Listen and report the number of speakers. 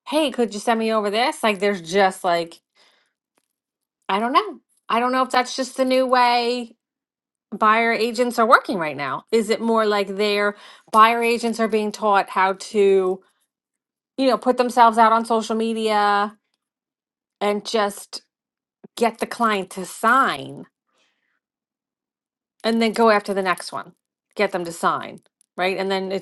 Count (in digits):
1